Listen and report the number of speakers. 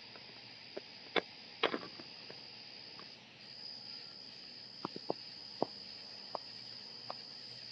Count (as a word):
zero